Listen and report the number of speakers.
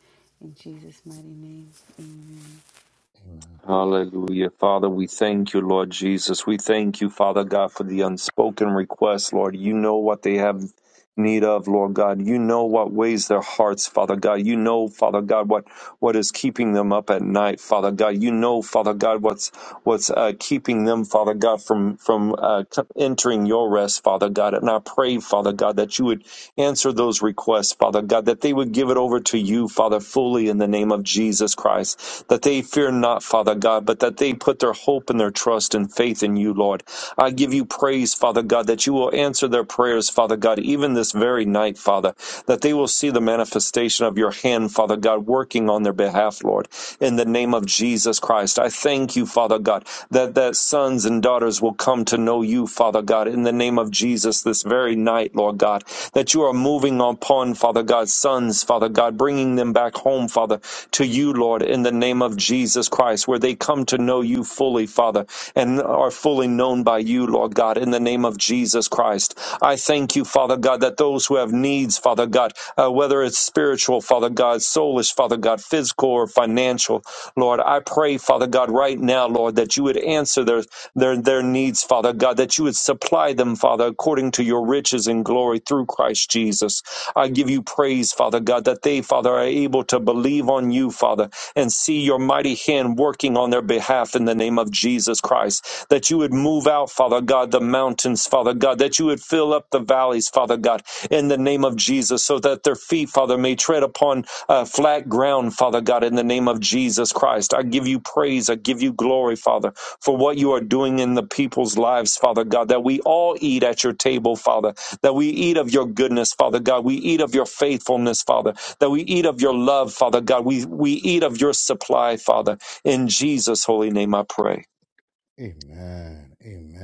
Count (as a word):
three